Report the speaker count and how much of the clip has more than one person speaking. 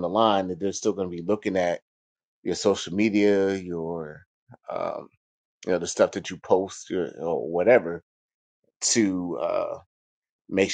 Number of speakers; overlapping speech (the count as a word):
one, no overlap